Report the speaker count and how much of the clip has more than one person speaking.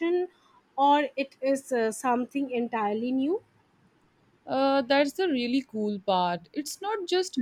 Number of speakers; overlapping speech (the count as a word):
two, no overlap